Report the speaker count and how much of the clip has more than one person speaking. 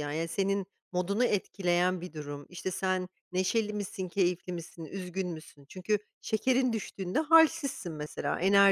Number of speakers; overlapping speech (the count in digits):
1, no overlap